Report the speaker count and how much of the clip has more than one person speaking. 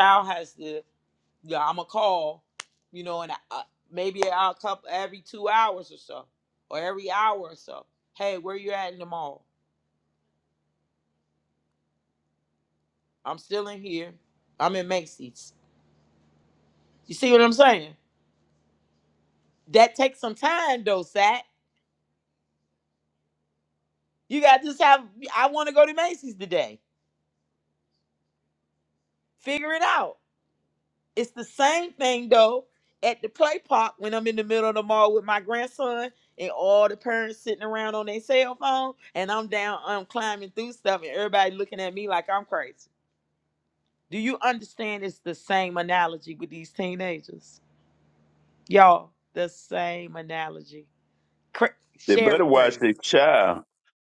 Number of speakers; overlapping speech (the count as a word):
two, about 1%